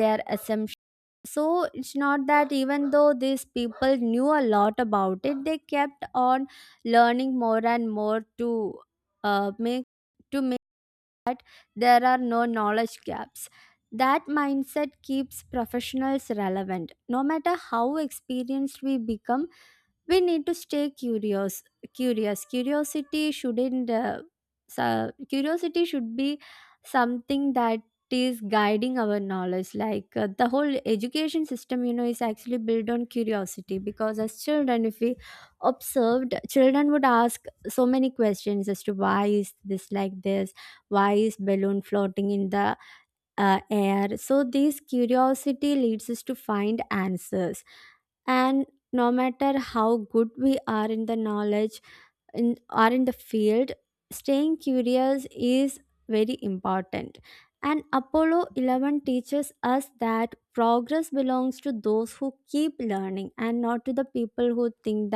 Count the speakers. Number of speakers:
one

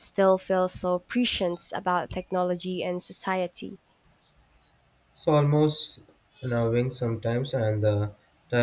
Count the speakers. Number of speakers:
two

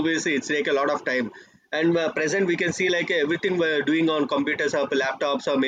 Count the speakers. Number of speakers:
one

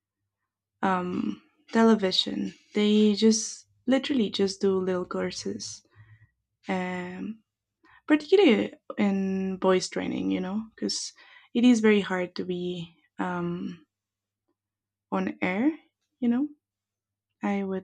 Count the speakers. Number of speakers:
one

